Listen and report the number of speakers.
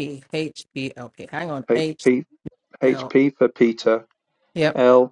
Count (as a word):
two